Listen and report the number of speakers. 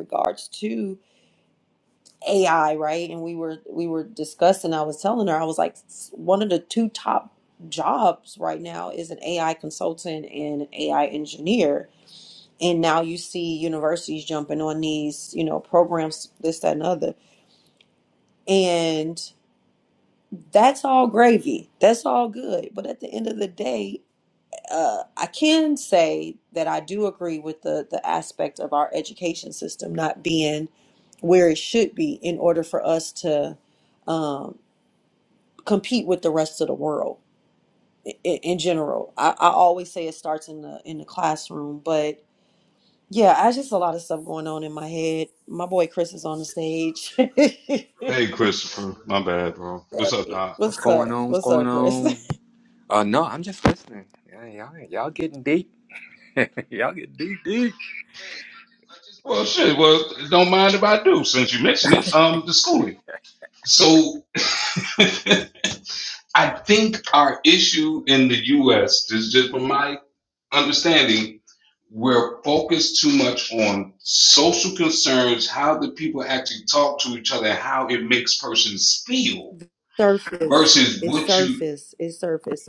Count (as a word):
three